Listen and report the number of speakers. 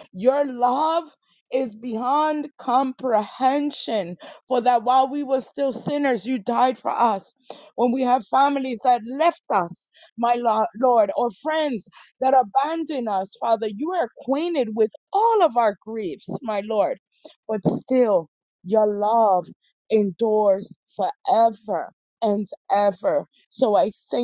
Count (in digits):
1